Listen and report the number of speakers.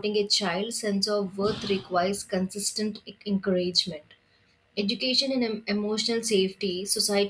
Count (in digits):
1